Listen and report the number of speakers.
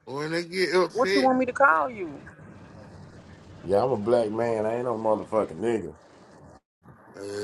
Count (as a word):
three